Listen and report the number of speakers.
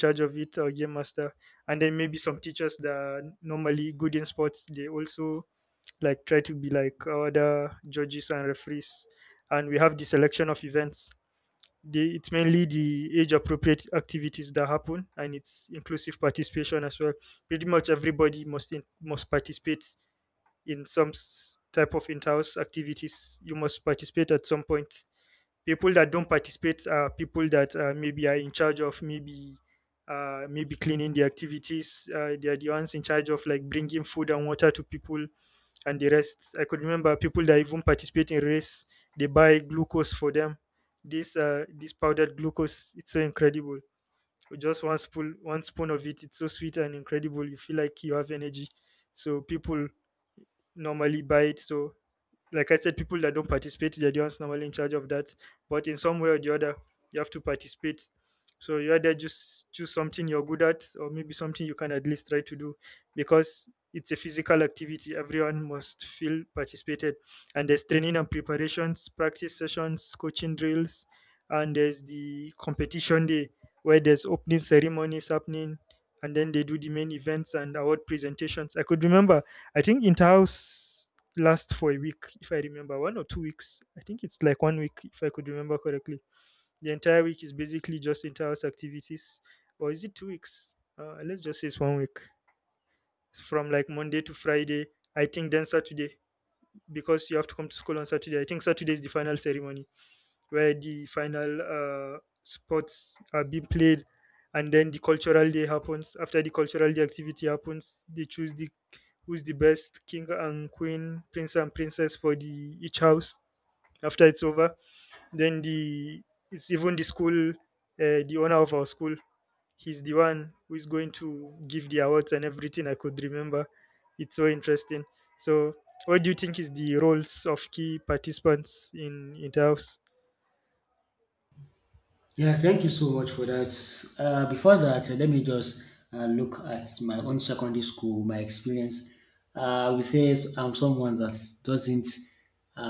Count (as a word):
two